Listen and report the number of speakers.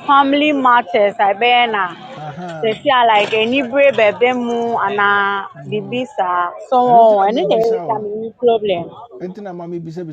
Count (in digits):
2